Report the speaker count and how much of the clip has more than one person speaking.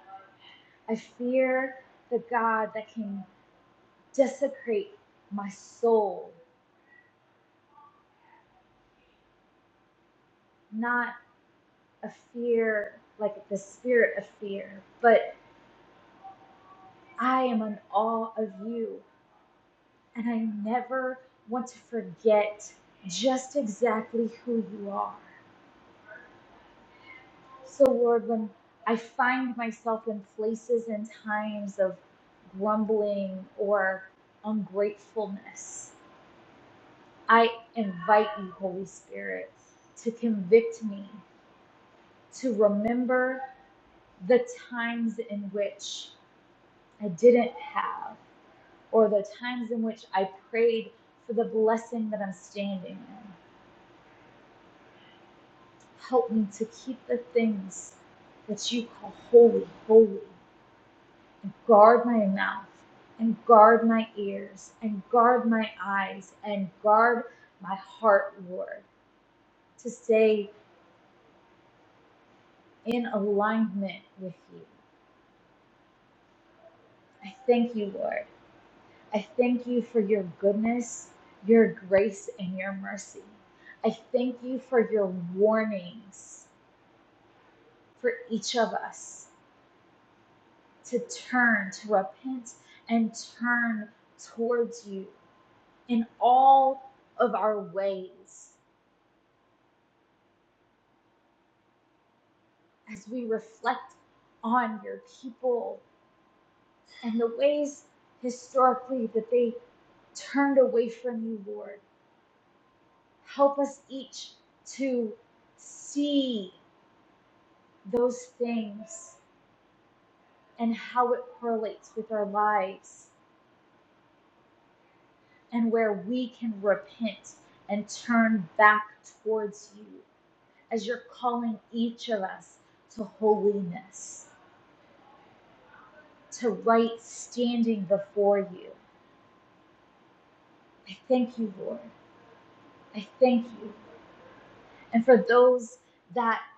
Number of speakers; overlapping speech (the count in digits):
1, no overlap